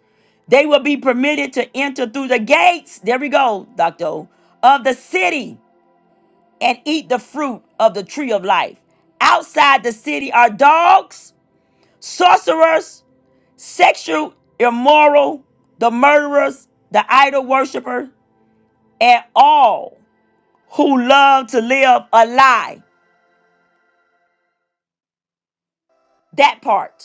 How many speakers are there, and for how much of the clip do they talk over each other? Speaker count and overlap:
1, no overlap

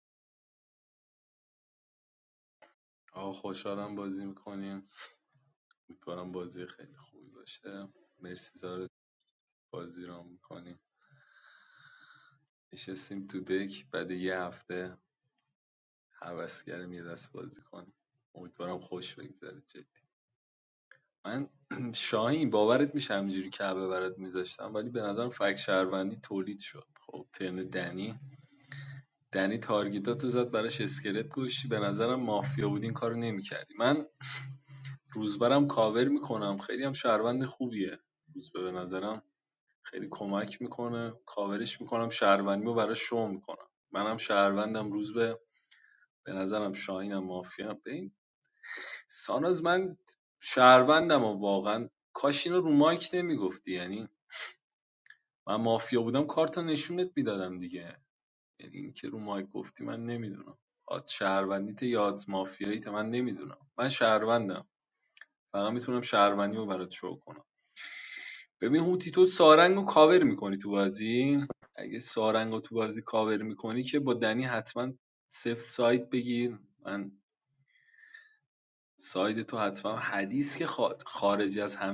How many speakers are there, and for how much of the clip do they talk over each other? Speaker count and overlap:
1, no overlap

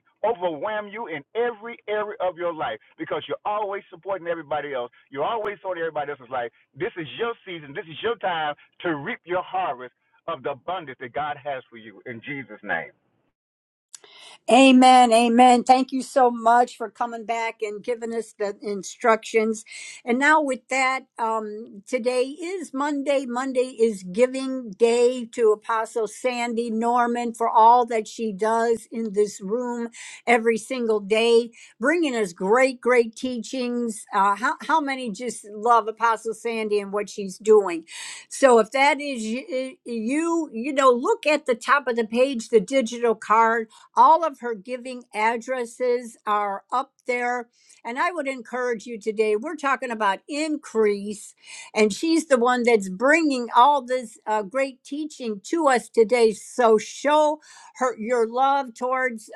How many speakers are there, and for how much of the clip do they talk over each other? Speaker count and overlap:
2, no overlap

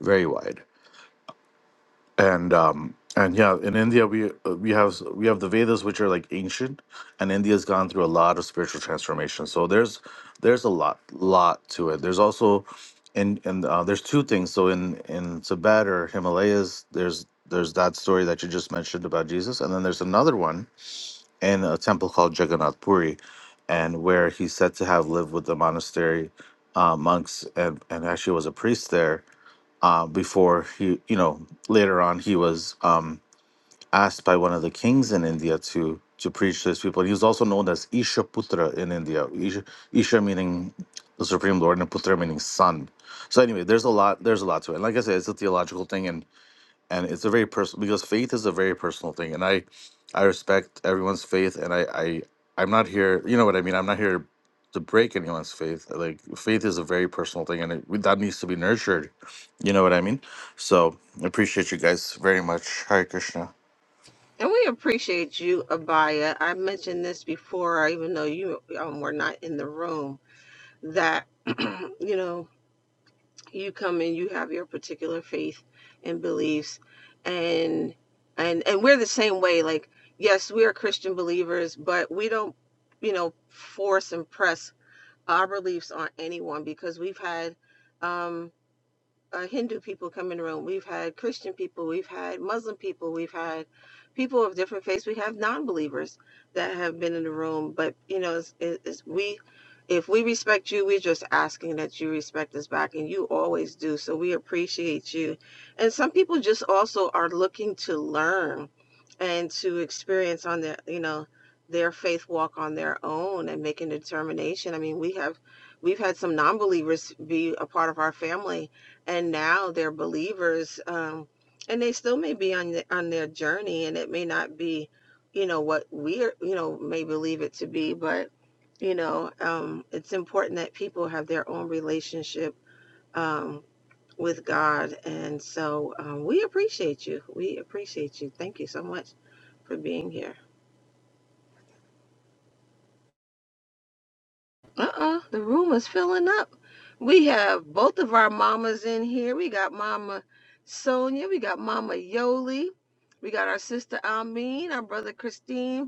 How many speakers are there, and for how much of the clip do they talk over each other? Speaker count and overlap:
2, no overlap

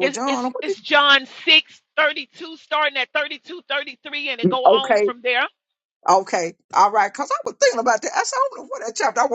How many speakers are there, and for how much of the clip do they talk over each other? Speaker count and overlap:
2, about 12%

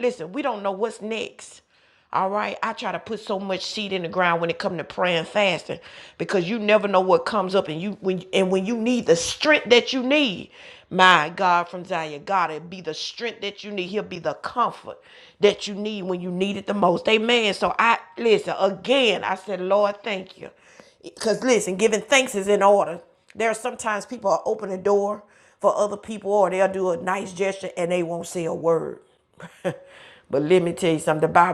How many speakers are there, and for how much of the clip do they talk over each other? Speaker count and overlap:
1, no overlap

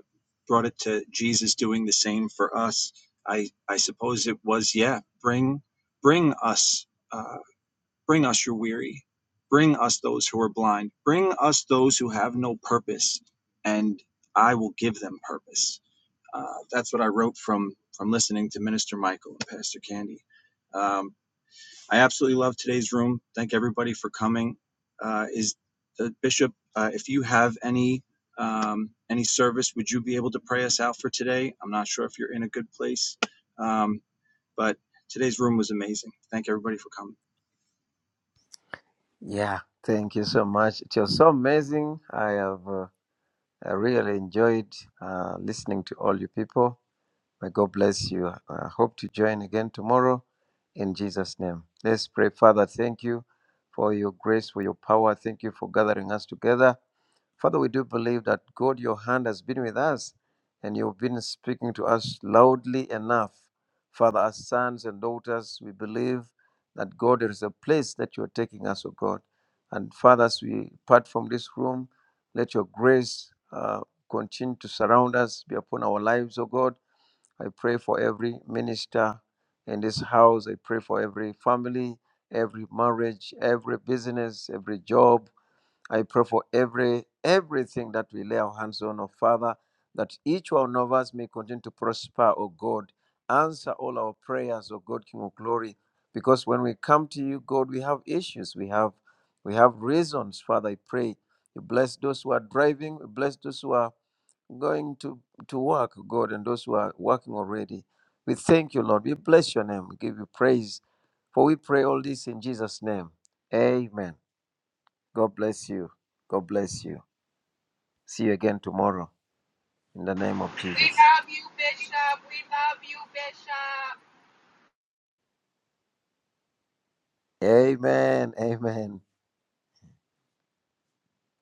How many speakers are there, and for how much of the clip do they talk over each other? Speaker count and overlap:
3, under 1%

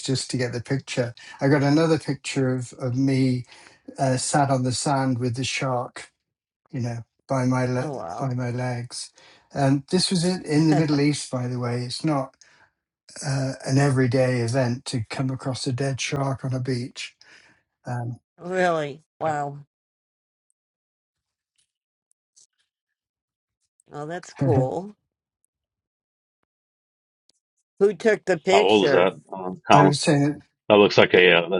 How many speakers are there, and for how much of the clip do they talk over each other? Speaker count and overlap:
3, about 4%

